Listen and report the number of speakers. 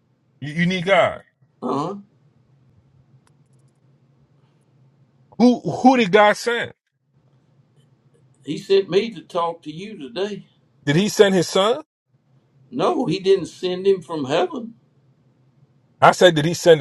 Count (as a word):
two